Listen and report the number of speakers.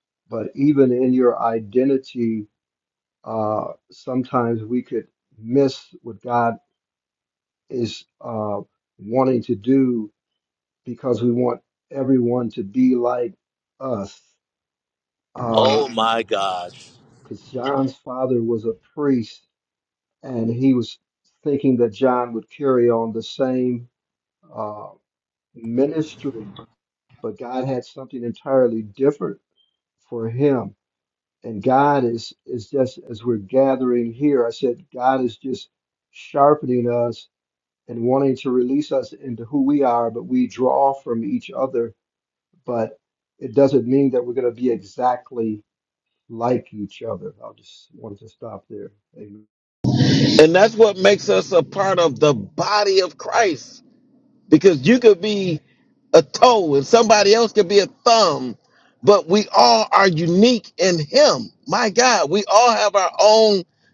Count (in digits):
3